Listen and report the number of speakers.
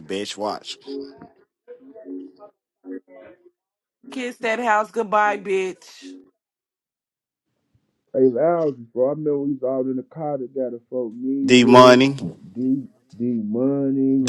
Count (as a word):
three